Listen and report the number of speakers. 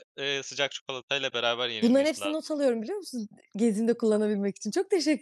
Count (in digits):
2